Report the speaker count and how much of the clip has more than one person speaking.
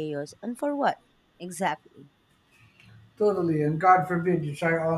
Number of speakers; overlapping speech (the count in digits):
2, no overlap